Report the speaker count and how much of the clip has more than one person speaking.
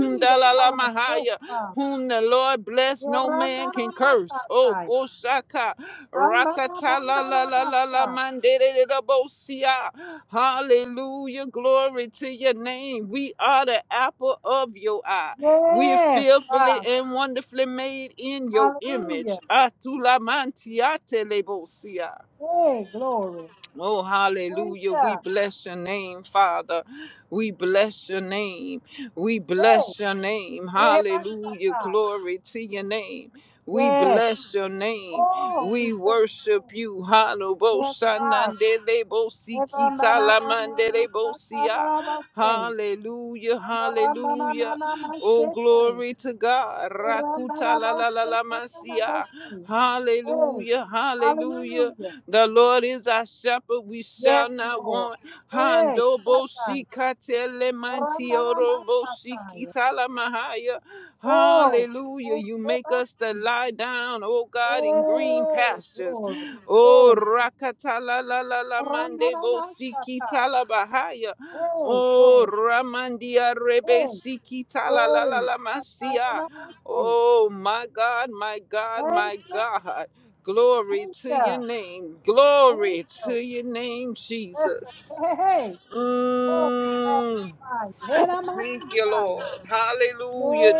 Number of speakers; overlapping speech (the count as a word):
two, about 34%